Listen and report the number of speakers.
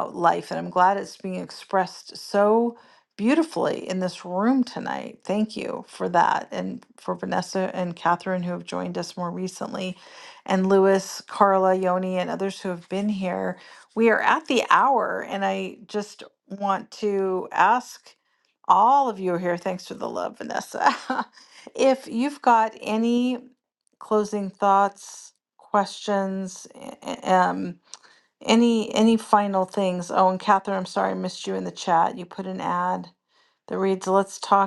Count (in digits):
1